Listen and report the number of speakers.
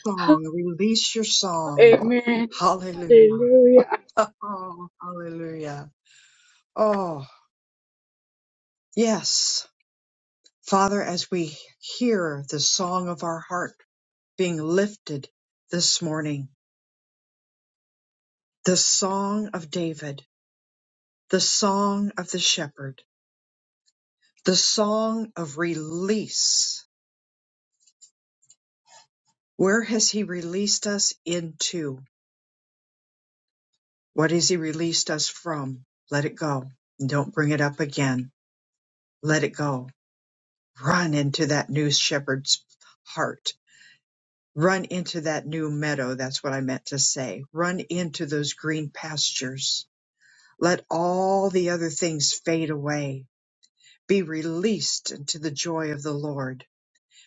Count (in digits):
2